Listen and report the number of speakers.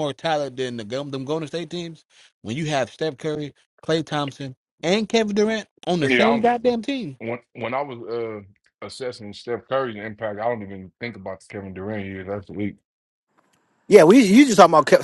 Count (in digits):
3